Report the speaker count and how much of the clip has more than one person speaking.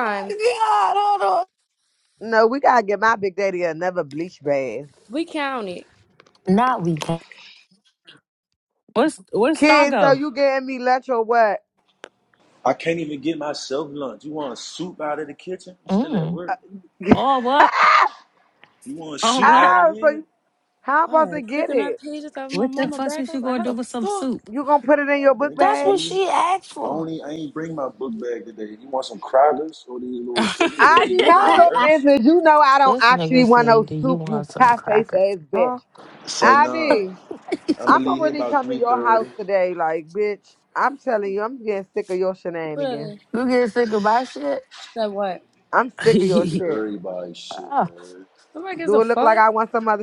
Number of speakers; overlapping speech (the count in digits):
5, about 28%